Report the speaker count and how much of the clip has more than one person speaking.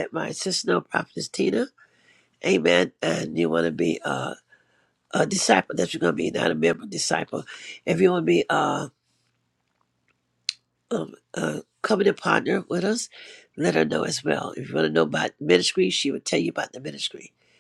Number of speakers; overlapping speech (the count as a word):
one, no overlap